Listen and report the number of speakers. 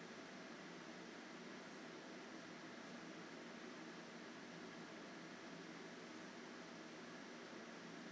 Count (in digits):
0